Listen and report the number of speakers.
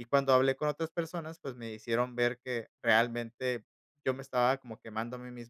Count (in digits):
1